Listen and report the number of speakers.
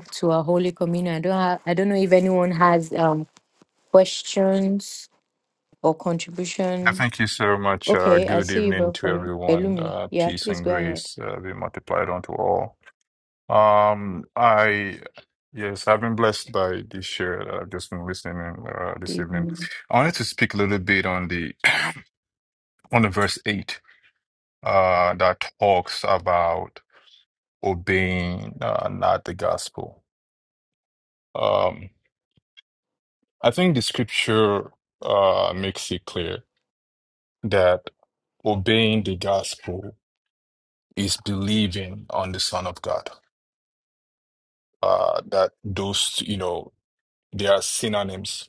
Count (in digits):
2